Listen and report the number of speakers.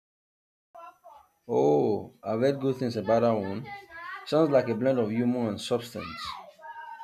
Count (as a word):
one